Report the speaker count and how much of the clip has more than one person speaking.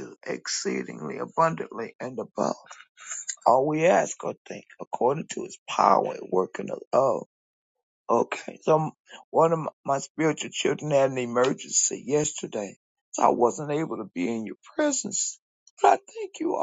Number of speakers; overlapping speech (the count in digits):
1, no overlap